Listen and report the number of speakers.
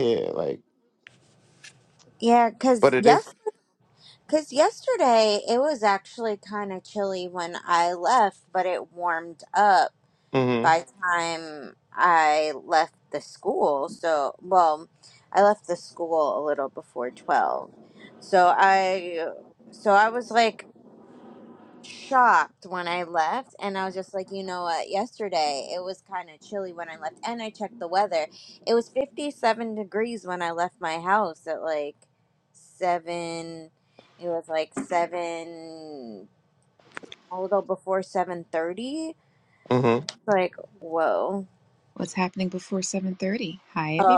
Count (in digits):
3